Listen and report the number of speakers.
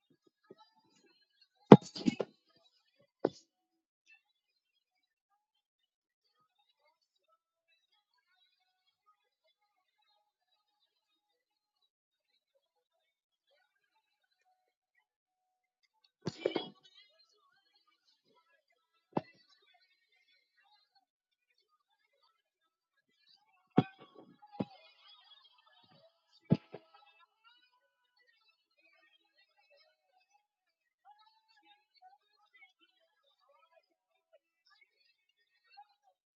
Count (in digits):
0